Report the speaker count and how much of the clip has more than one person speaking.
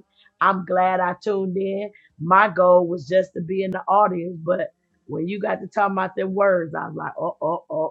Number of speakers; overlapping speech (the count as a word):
one, no overlap